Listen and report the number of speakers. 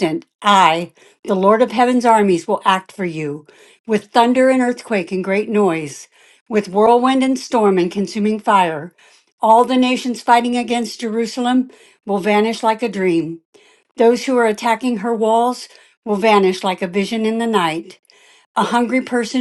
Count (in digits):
1